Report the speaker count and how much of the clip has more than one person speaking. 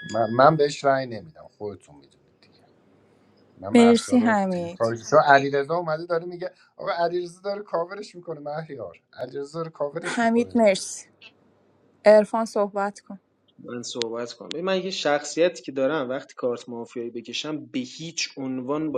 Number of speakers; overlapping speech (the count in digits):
3, about 8%